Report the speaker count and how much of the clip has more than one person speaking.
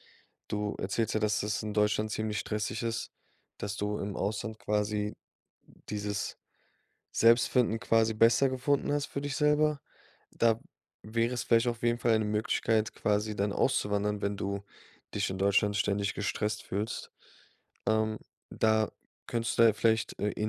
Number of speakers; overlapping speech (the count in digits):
1, no overlap